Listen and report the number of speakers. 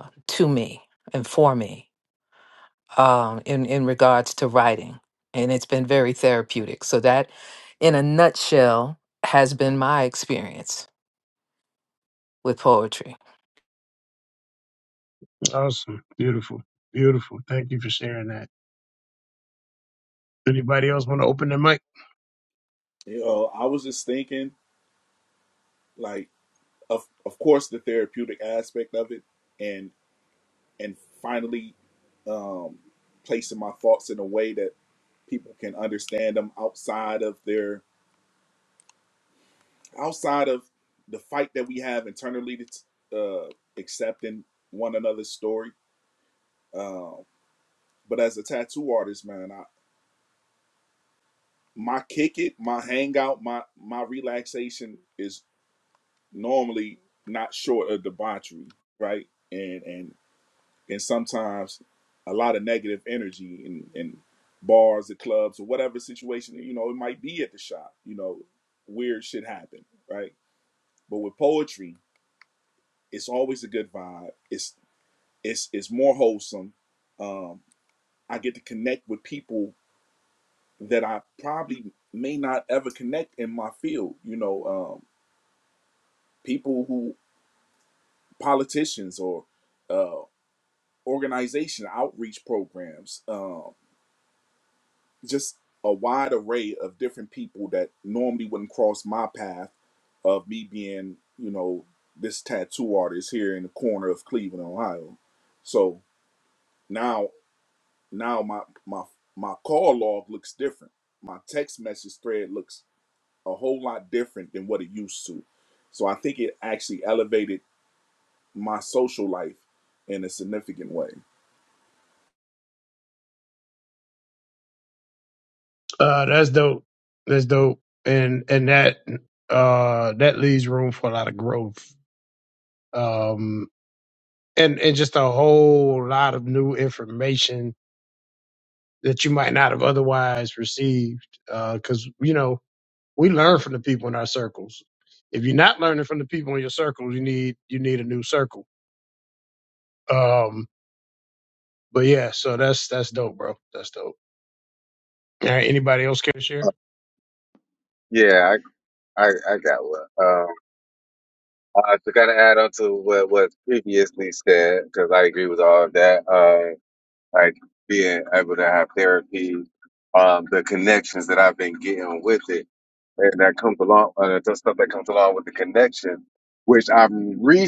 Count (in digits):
4